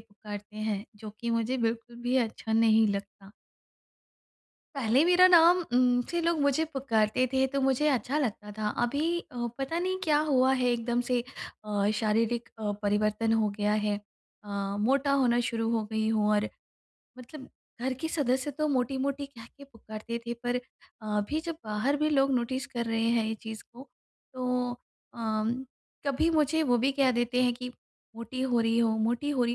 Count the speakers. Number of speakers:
1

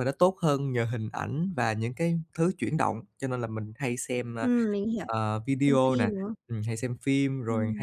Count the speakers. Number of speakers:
2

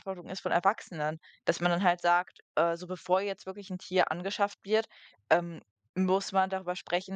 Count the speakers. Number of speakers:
1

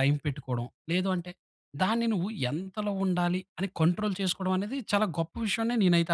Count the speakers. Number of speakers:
1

